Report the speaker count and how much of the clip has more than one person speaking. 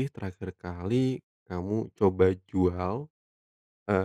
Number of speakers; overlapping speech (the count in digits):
1, no overlap